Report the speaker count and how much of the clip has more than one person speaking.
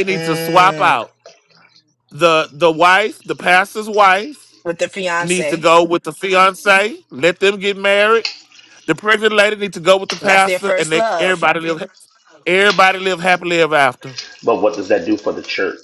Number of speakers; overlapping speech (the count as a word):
three, about 16%